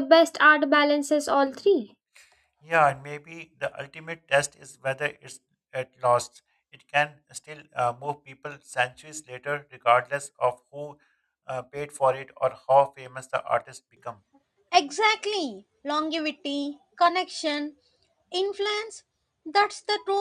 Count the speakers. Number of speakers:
3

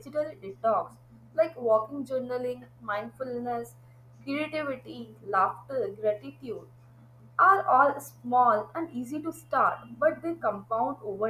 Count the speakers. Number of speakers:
1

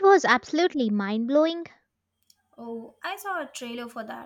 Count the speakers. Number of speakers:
2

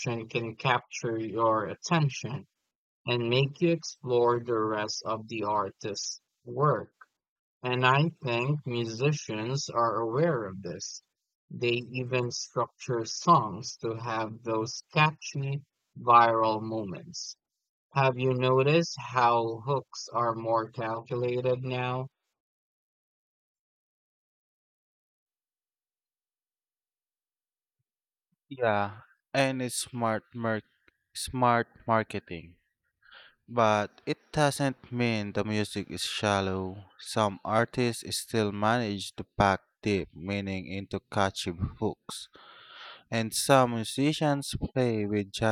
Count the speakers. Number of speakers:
2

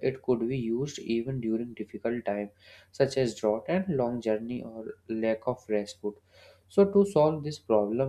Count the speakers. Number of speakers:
1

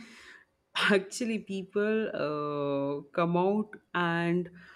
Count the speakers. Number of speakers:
1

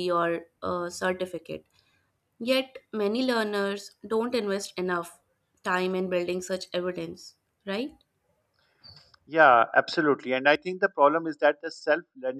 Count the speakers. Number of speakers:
2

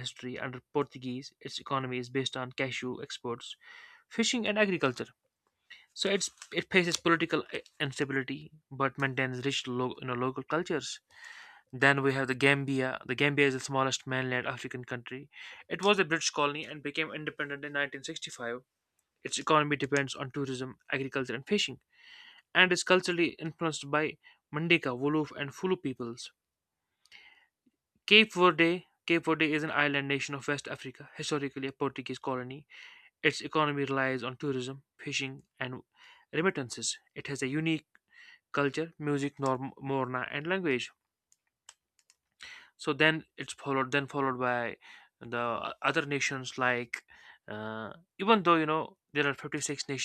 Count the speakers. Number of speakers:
1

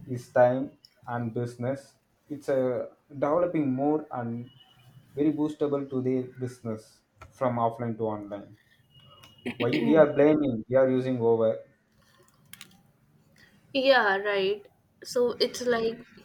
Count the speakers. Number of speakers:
2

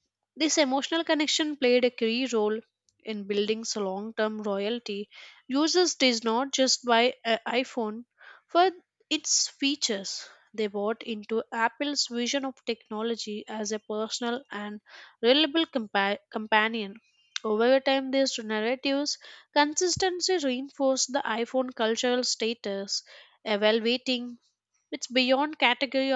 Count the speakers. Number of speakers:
1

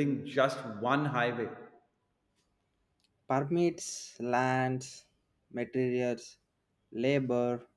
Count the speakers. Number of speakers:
2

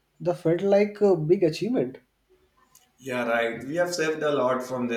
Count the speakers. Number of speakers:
2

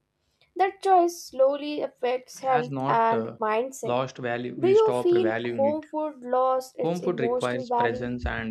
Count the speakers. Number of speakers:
2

